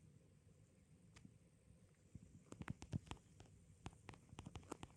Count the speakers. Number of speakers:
zero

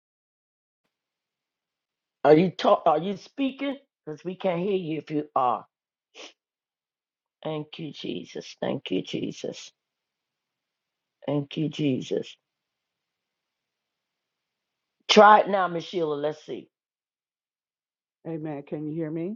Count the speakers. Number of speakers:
two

